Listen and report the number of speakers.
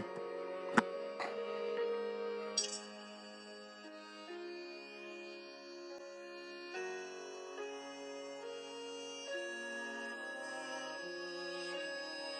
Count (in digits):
0